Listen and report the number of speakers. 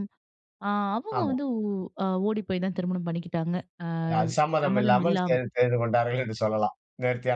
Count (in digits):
2